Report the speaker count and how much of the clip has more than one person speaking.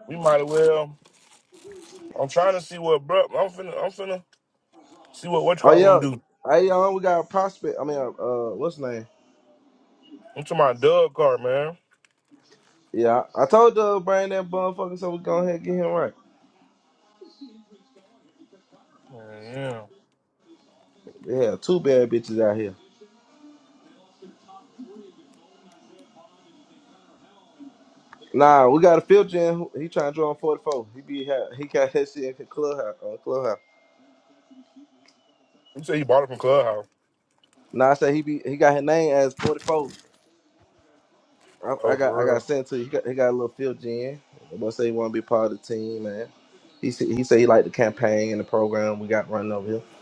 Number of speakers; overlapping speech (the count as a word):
two, about 2%